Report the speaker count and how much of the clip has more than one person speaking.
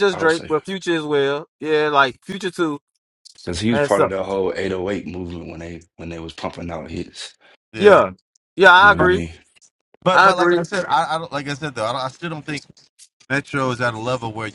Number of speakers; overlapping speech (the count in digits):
3, about 15%